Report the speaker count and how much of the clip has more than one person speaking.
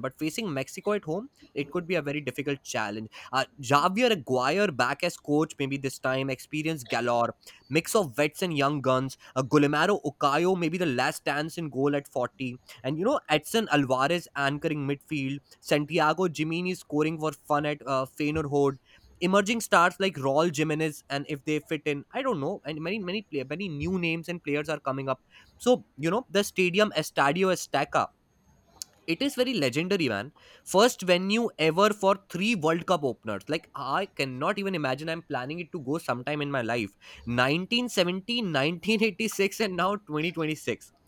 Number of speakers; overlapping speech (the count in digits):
1, no overlap